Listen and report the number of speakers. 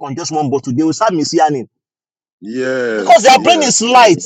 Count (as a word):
two